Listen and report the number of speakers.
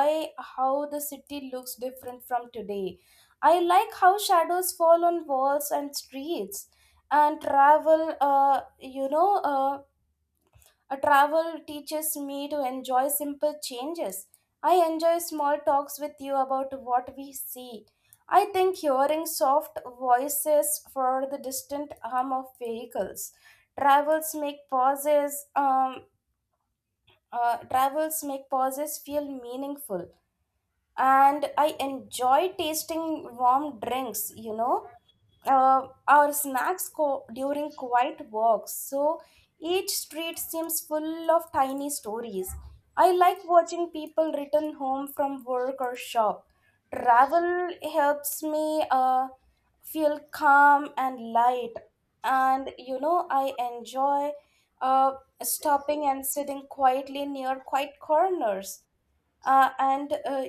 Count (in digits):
1